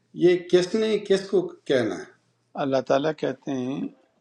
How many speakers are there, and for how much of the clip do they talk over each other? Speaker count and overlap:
2, no overlap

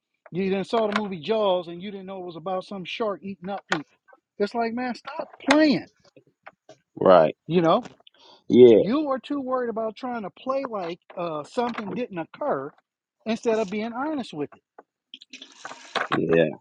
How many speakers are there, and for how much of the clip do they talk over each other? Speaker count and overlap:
2, about 1%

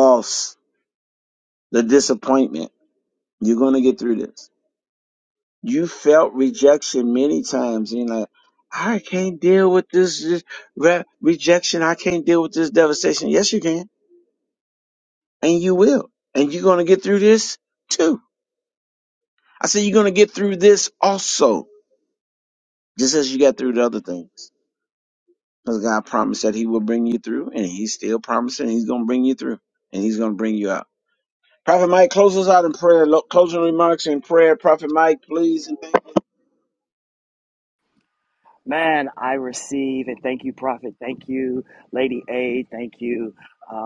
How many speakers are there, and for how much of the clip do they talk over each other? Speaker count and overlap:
2, no overlap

